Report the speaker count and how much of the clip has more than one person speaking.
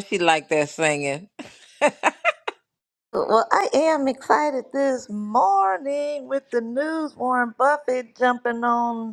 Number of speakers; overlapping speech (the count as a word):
two, no overlap